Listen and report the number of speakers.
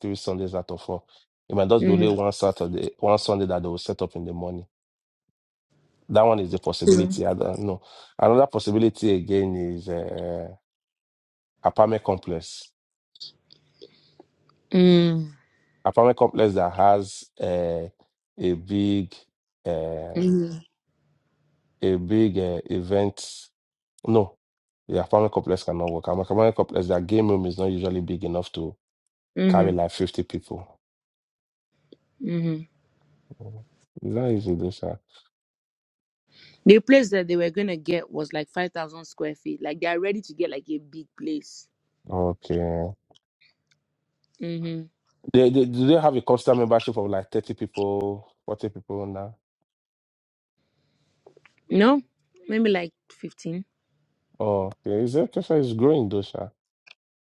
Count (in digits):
2